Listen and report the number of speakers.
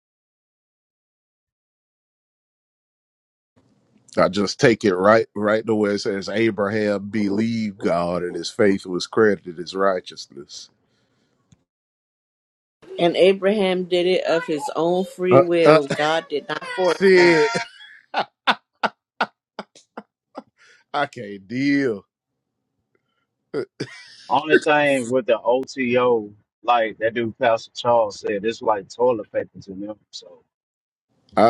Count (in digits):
3